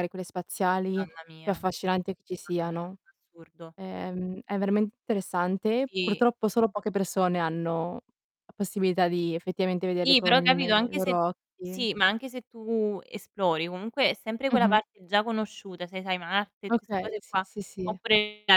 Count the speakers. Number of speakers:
two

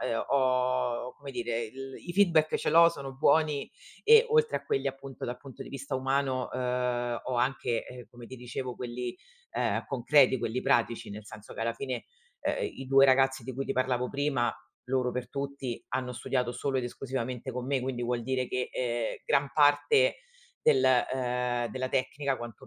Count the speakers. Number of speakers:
one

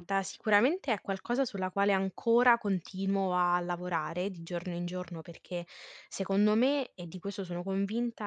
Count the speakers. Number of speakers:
one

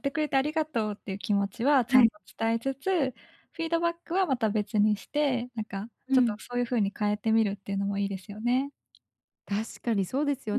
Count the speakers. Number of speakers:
two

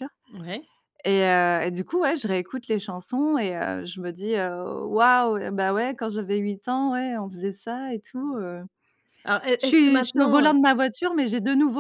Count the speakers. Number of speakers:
two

